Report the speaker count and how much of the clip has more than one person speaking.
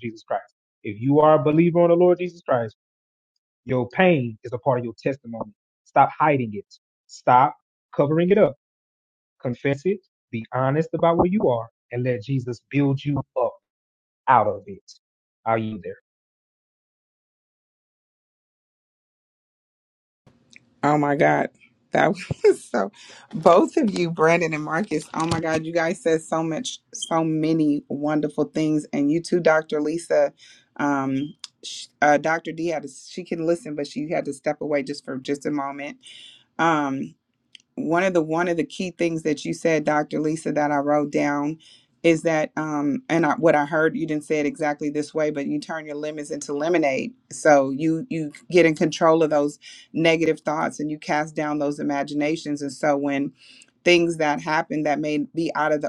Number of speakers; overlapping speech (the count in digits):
2, no overlap